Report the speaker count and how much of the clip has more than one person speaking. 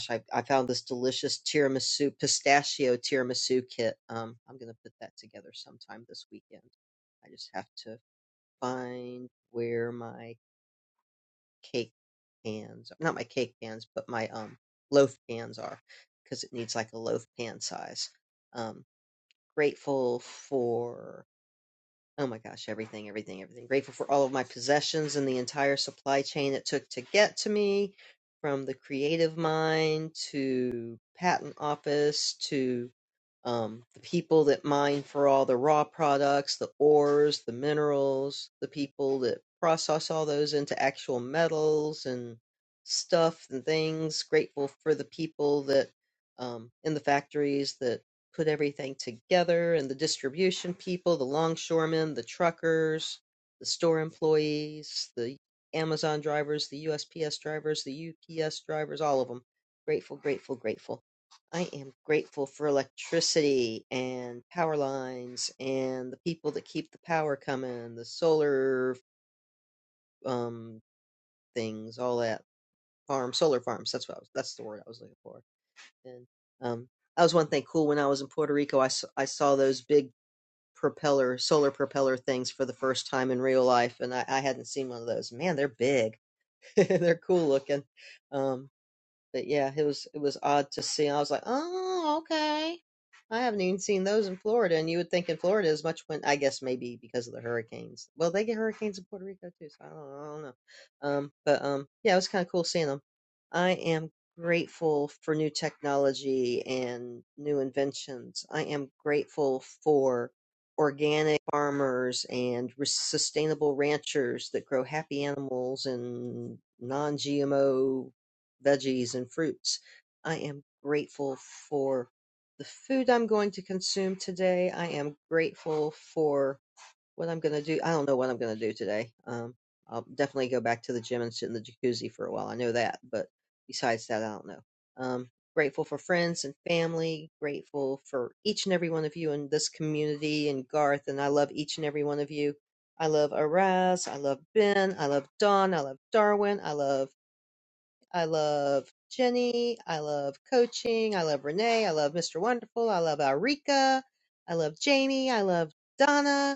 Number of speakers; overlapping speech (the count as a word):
one, no overlap